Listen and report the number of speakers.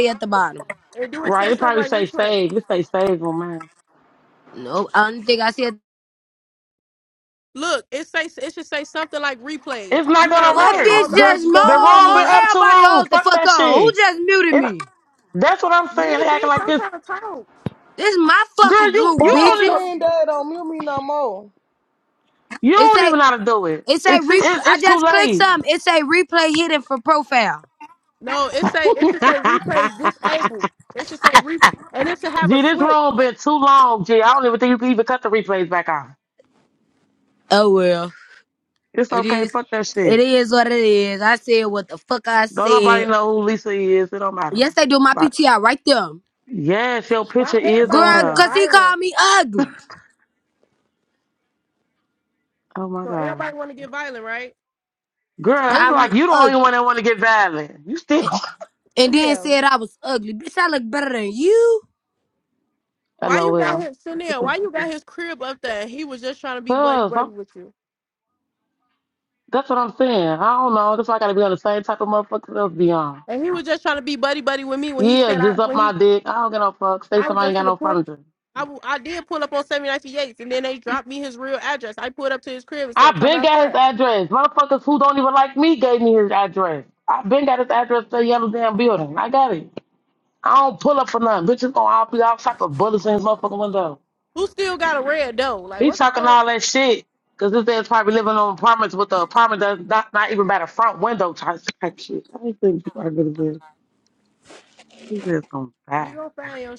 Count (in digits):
4